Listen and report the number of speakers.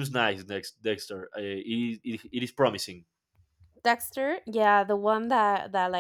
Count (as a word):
two